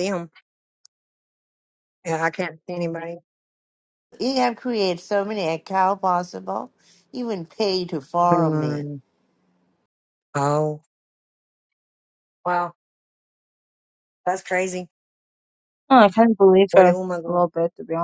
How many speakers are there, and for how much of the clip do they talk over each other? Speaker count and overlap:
three, about 5%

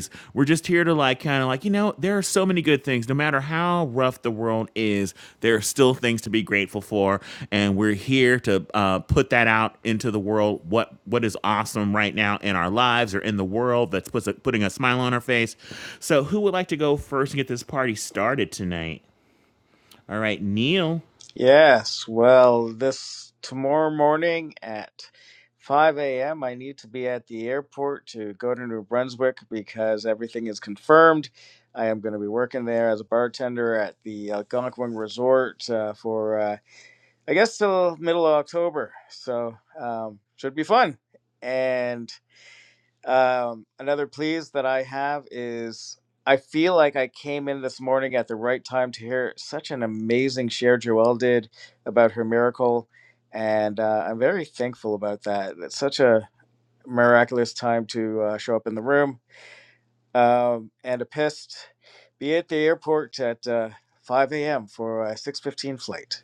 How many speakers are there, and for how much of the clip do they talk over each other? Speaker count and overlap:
two, no overlap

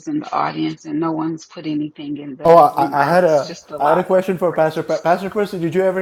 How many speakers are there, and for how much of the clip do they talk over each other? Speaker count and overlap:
two, about 37%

